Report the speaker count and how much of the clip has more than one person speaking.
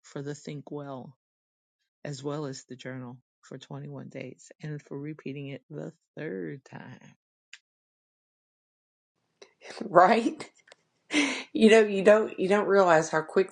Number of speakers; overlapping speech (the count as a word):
two, no overlap